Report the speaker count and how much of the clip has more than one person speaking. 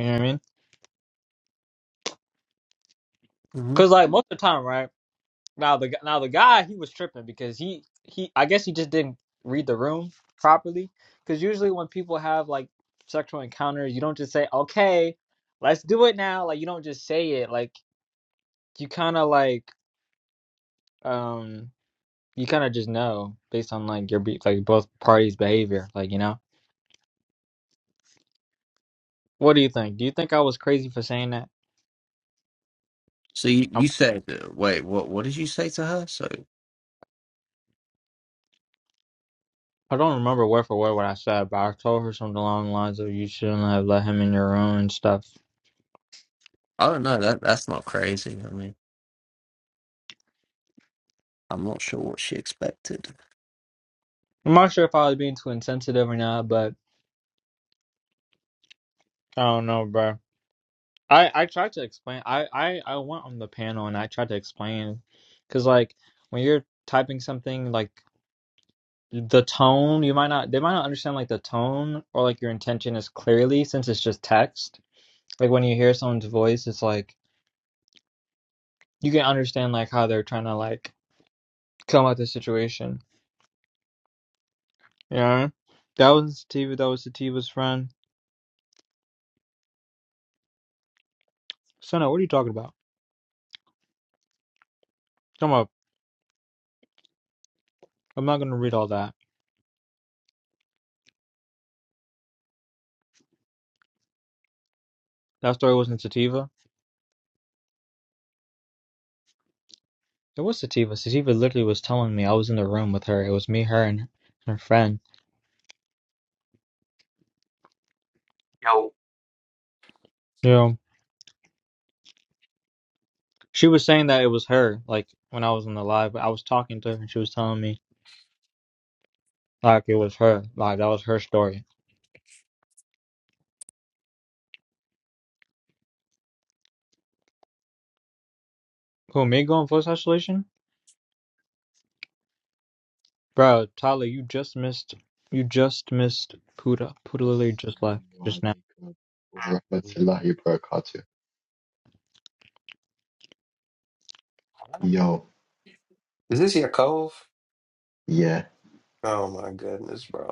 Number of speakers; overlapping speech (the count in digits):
4, under 1%